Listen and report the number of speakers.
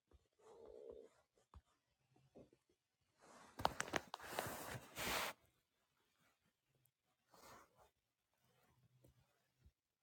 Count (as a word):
zero